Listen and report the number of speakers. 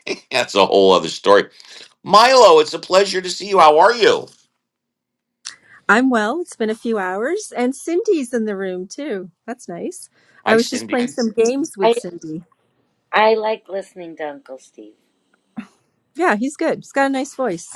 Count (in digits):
3